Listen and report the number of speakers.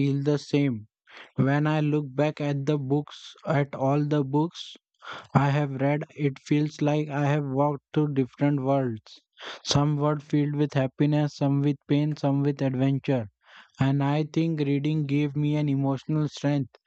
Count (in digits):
1